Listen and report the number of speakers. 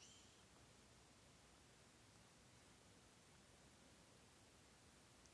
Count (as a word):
zero